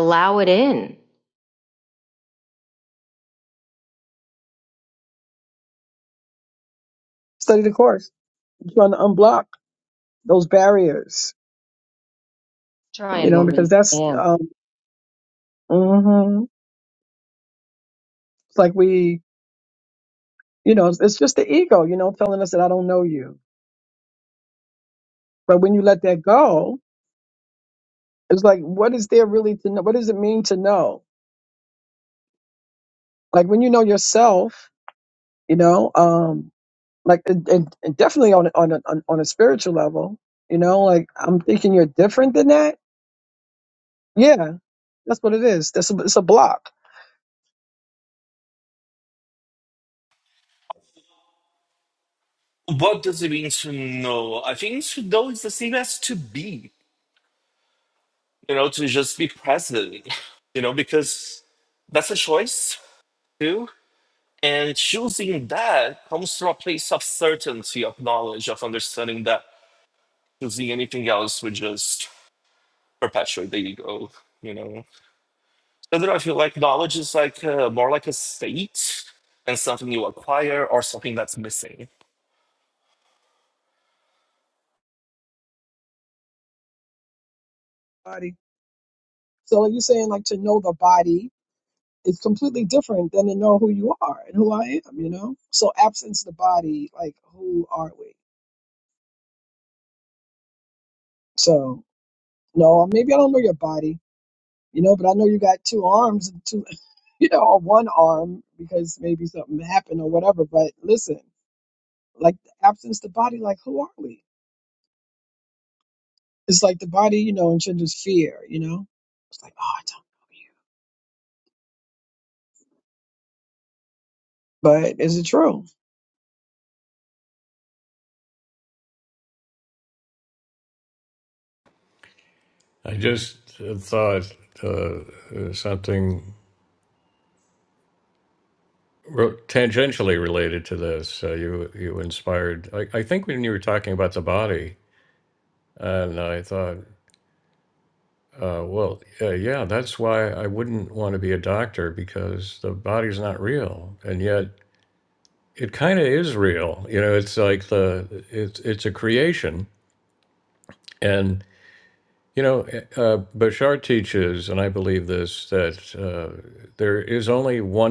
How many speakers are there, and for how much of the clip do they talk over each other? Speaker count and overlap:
4, about 1%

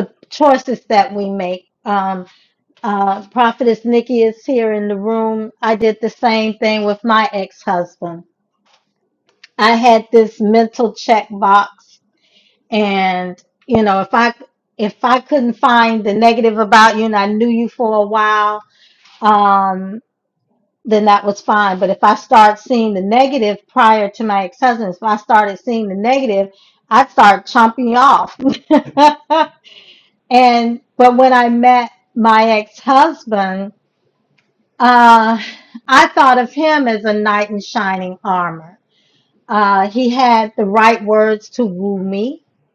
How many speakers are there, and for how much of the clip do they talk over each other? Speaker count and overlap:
1, no overlap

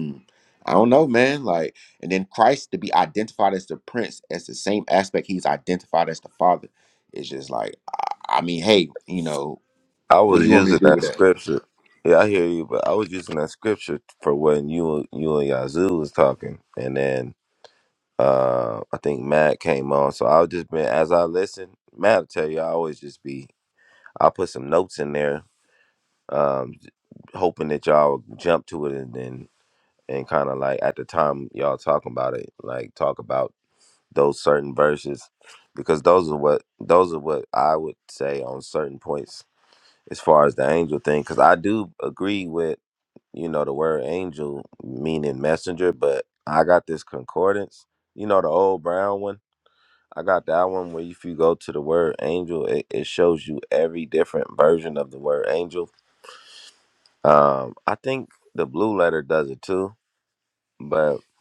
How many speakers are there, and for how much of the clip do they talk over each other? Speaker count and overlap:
2, about 2%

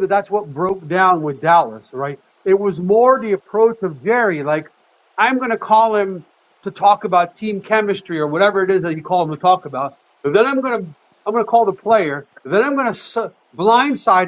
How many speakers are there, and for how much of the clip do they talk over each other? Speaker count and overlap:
1, no overlap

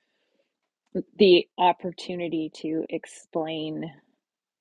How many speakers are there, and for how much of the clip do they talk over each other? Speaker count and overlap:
1, no overlap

